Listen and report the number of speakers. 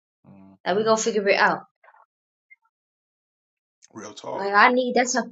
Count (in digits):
2